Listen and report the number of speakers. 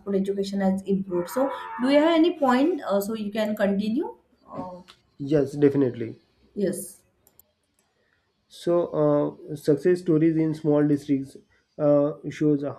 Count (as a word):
two